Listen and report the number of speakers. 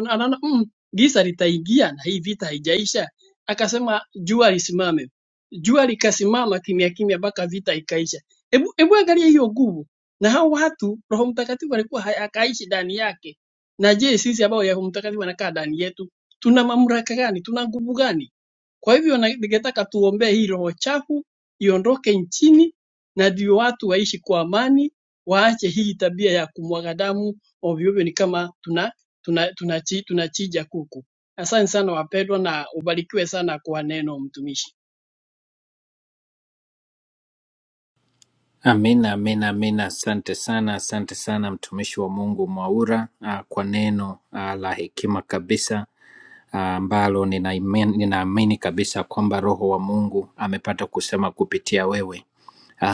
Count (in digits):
2